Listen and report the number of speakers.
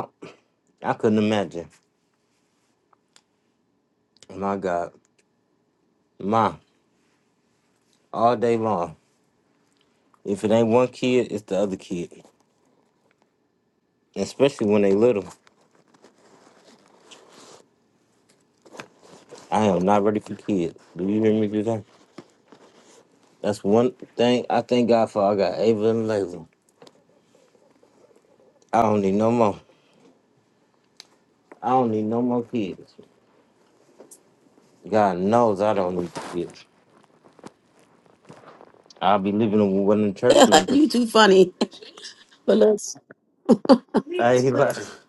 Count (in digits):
2